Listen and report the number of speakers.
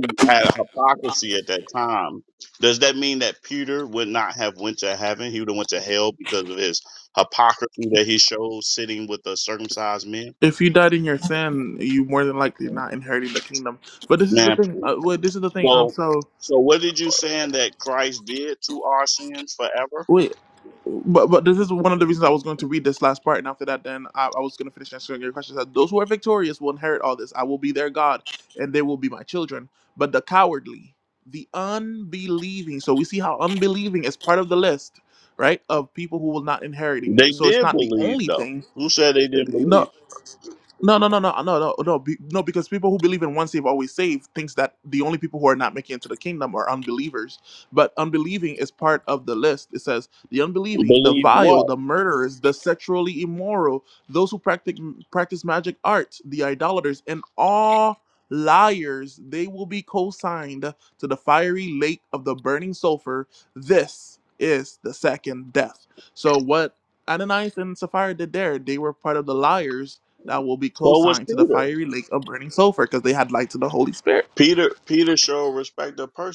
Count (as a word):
two